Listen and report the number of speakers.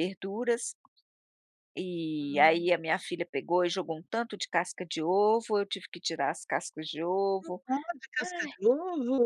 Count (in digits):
2